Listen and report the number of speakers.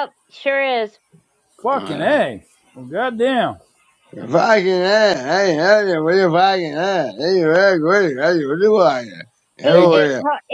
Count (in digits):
3